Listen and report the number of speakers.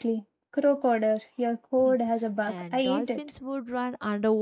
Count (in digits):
2